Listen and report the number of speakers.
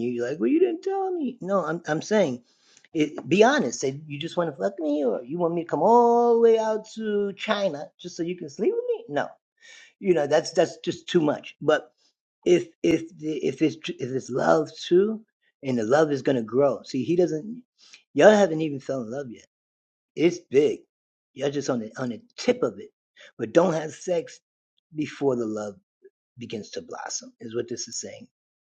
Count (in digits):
1